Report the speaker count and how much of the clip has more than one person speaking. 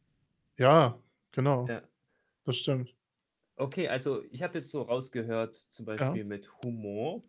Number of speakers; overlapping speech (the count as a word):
two, about 4%